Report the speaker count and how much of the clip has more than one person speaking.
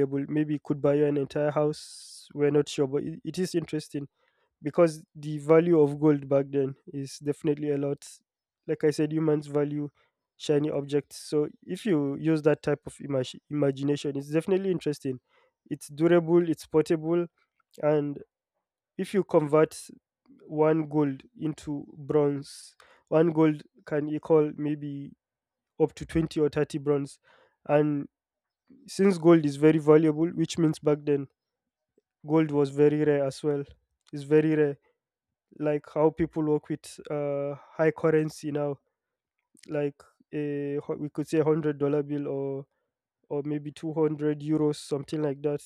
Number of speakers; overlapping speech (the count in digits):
1, no overlap